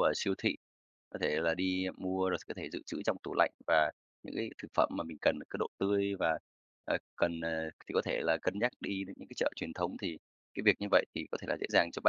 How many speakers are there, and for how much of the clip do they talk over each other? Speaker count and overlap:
1, no overlap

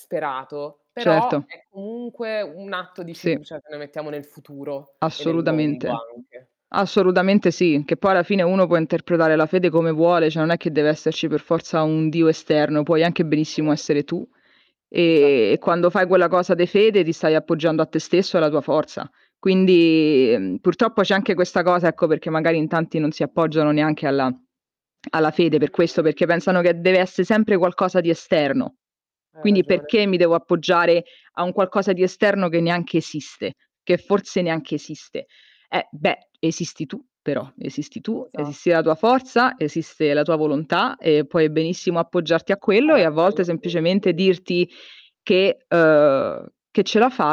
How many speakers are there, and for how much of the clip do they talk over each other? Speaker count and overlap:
2, about 7%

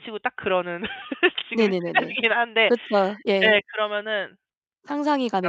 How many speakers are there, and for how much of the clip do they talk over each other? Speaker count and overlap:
2, about 16%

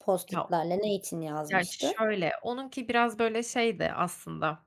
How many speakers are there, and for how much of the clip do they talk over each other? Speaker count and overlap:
2, about 15%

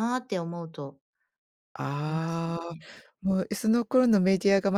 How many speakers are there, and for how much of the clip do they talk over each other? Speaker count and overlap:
2, about 5%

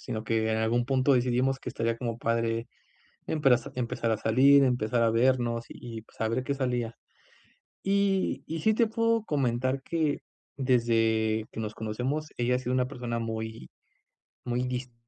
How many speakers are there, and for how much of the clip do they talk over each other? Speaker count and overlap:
1, no overlap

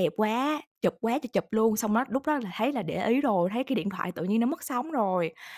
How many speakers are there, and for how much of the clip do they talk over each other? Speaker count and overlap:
1, no overlap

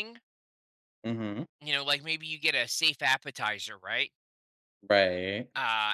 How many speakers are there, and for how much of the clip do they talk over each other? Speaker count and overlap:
2, no overlap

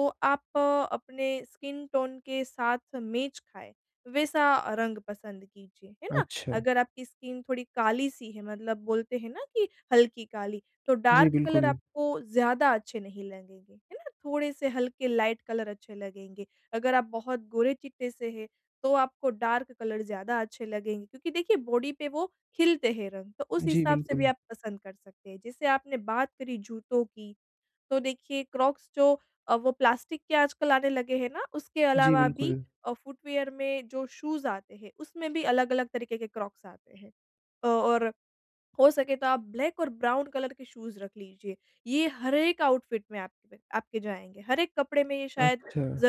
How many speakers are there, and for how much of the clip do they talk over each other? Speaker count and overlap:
2, about 6%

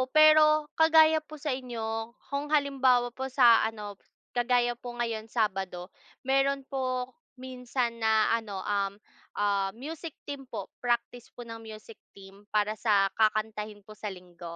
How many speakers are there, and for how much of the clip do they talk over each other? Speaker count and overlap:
1, no overlap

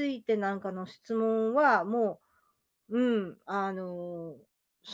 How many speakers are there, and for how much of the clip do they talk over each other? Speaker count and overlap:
1, no overlap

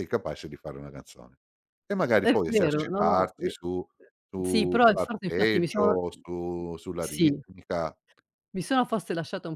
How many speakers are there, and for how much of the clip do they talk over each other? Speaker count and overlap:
2, about 33%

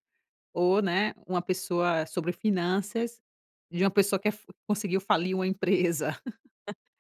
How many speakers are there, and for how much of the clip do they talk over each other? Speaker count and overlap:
1, no overlap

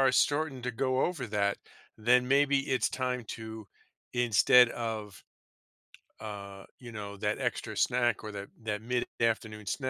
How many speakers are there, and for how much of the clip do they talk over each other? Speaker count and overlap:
1, no overlap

